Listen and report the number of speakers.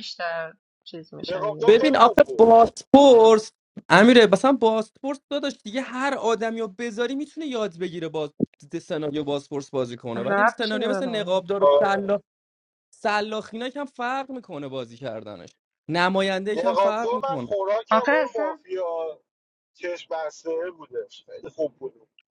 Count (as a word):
three